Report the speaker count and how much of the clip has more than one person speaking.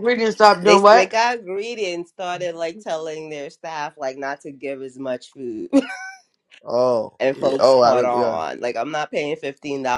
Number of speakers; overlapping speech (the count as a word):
three, about 17%